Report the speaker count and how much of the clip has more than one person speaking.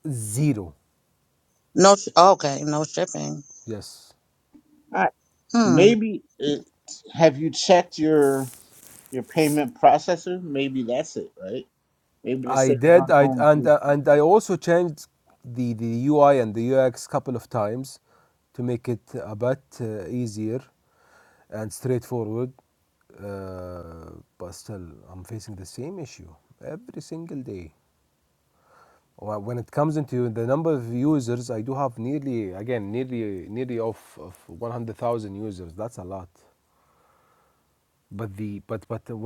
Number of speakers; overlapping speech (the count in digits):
3, about 4%